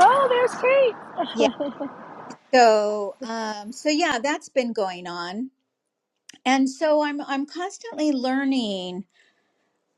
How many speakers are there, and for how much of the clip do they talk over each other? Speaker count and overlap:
two, no overlap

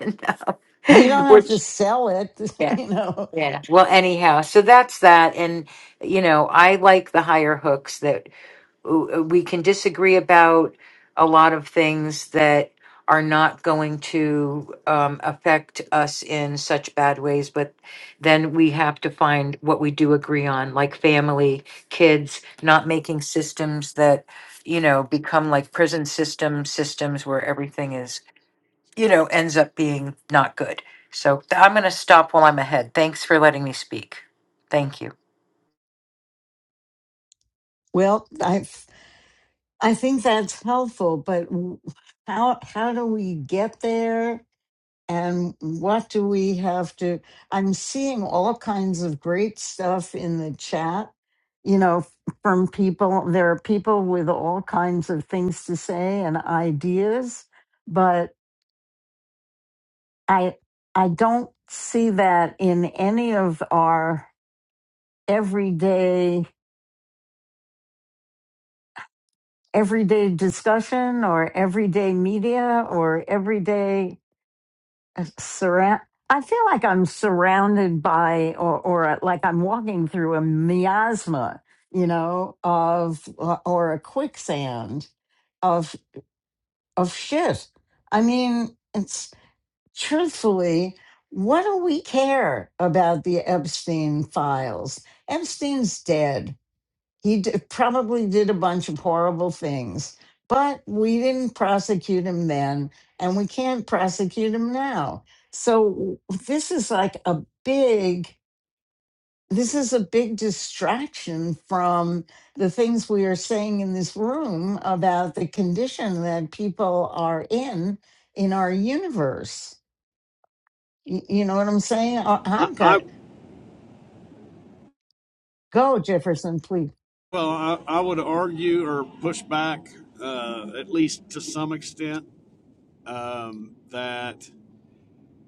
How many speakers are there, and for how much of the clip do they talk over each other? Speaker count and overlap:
three, about 1%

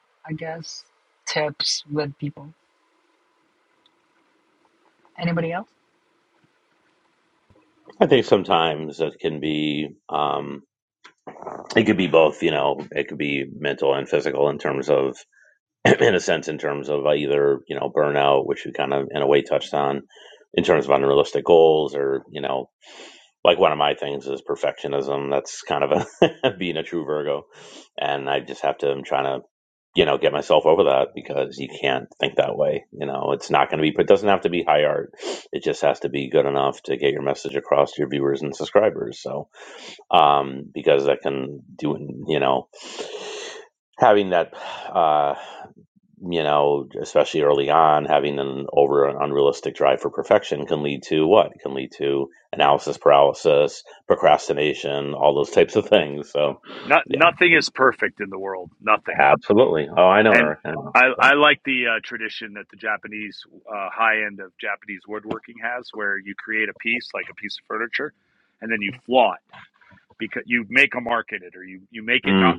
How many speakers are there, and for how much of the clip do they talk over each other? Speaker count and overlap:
three, about 2%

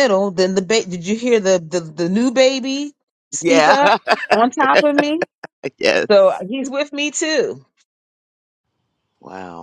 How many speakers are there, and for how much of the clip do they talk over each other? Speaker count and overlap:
two, about 3%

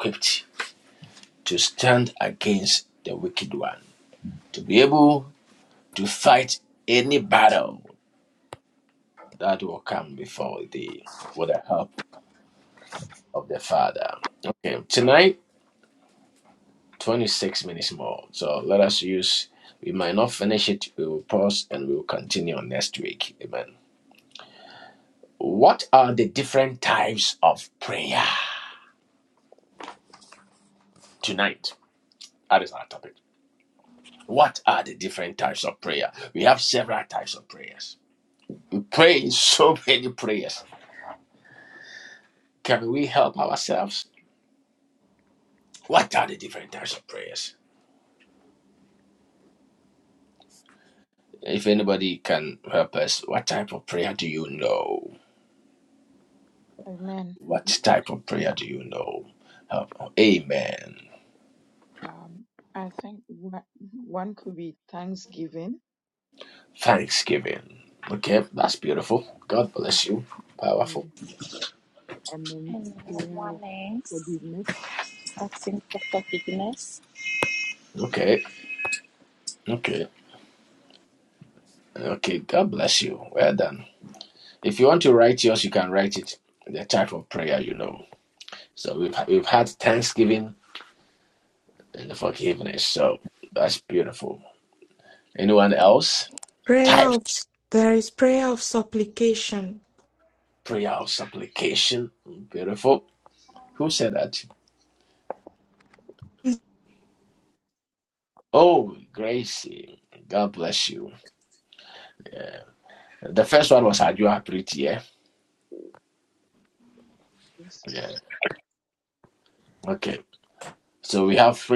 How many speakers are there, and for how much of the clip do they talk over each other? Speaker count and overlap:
four, about 1%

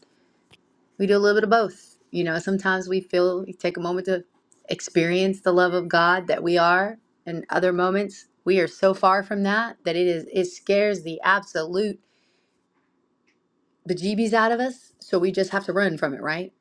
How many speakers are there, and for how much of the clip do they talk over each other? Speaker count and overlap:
one, no overlap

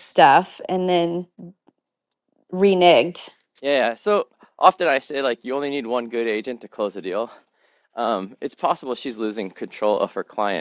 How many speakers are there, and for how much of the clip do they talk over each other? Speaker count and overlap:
two, no overlap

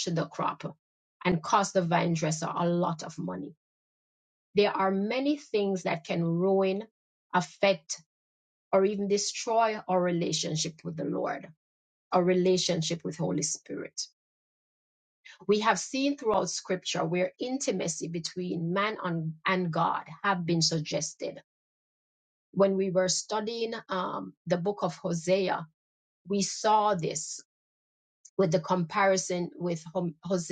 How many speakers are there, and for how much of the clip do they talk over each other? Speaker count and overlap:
one, no overlap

